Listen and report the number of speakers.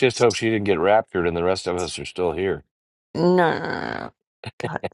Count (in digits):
2